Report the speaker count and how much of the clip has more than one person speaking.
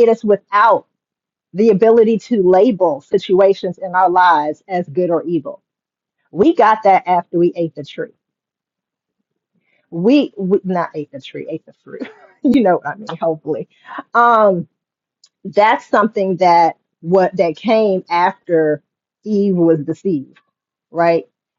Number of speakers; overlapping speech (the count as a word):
one, no overlap